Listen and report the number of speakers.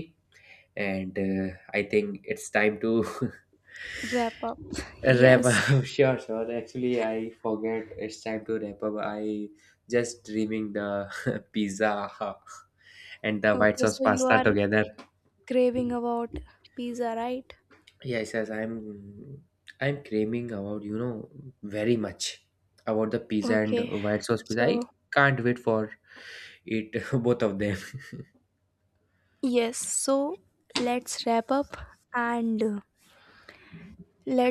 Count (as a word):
two